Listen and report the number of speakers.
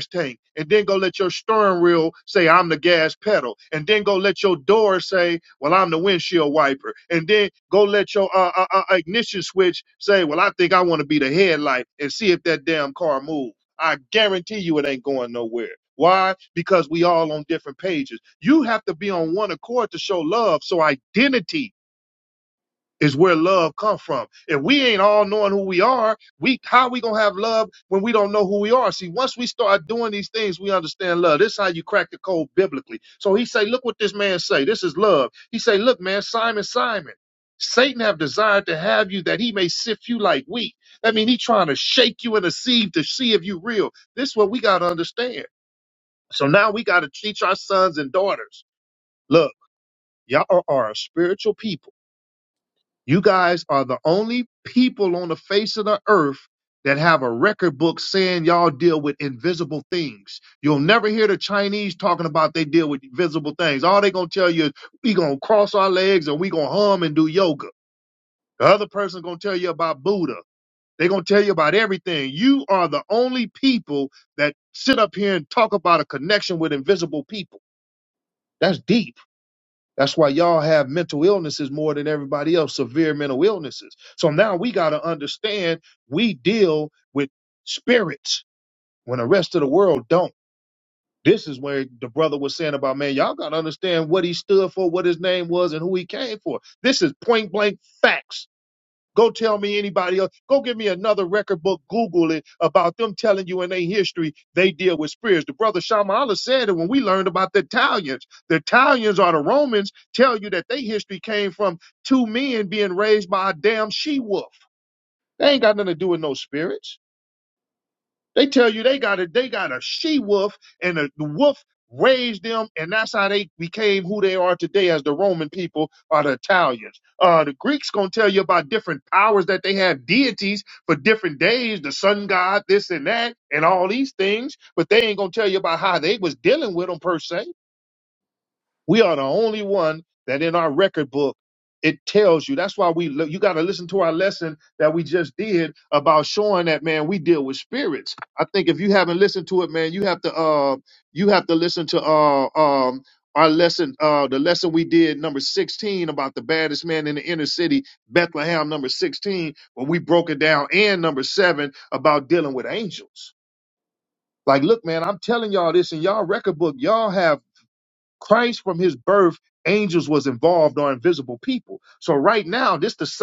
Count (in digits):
1